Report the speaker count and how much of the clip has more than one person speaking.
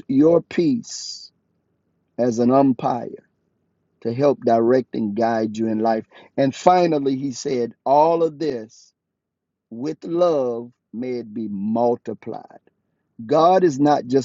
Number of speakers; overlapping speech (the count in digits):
1, no overlap